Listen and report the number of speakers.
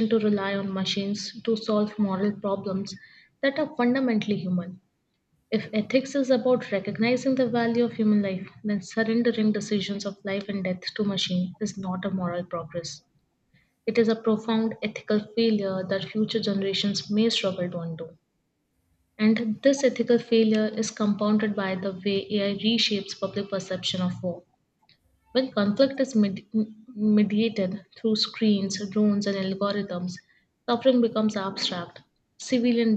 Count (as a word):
one